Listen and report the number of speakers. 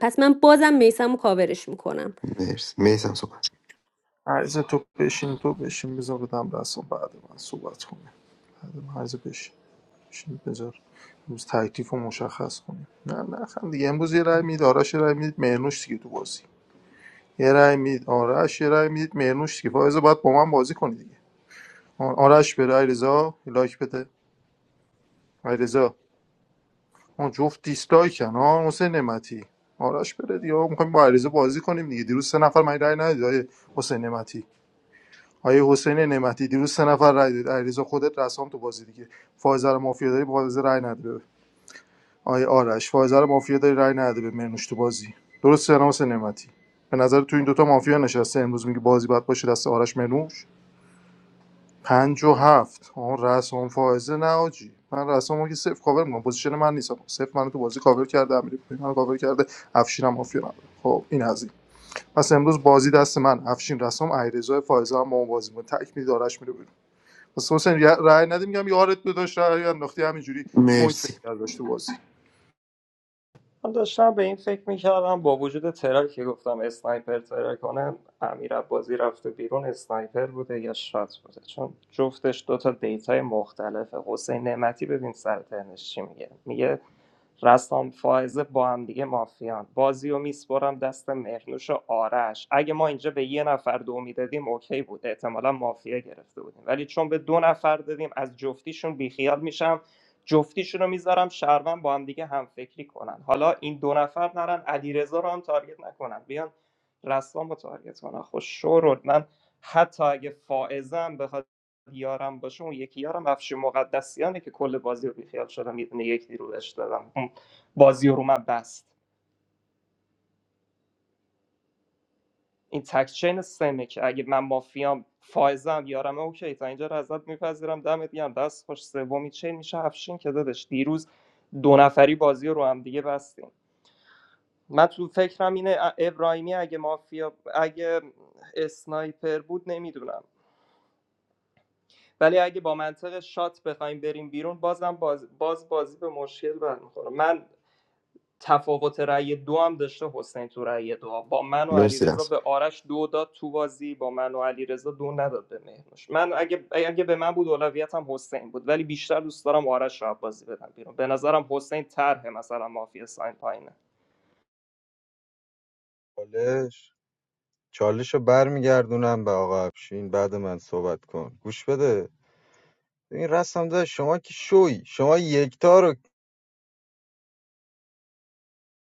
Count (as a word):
five